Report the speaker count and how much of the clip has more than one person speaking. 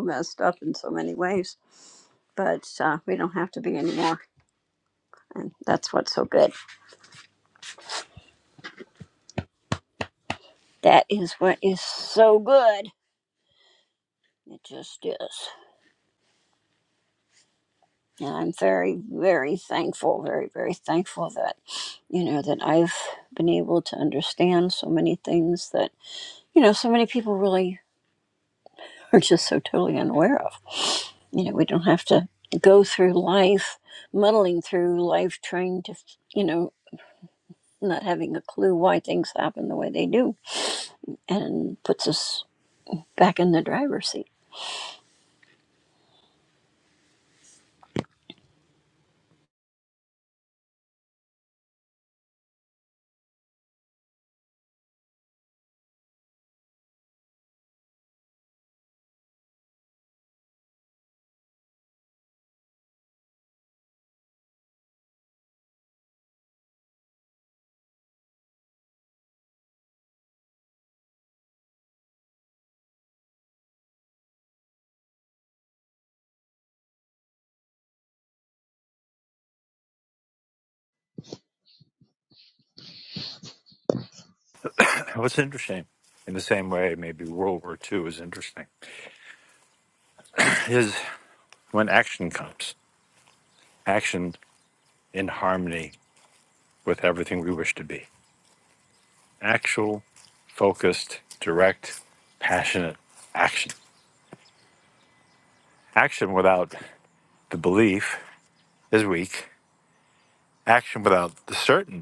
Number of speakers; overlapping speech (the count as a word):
two, no overlap